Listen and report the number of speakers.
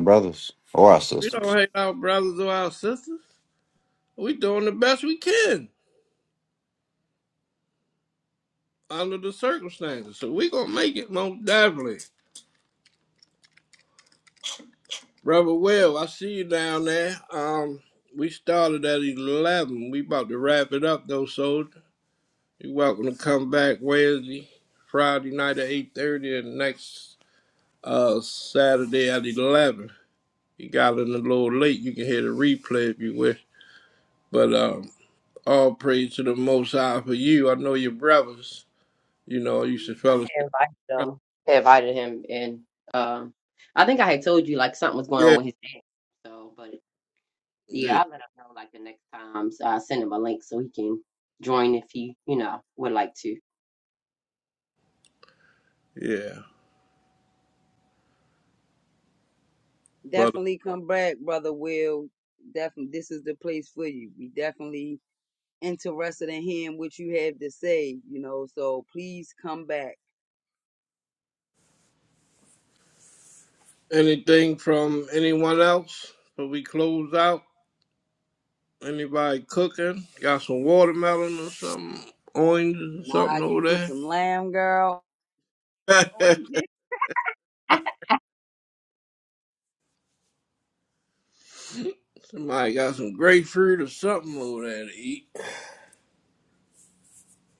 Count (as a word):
four